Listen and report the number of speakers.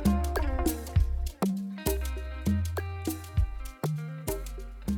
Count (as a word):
zero